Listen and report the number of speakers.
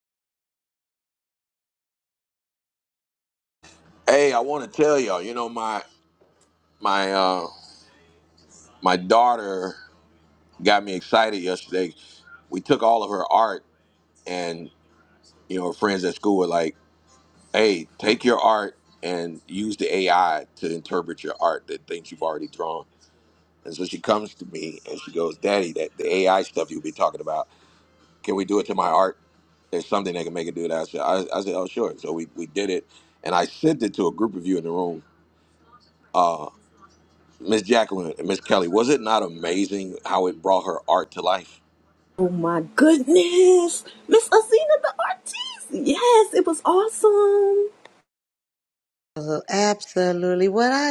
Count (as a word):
three